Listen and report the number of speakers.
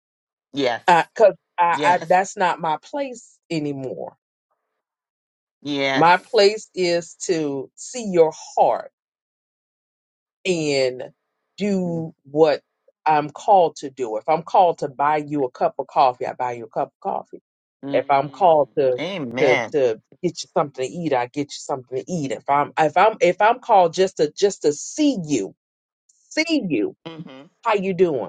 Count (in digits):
2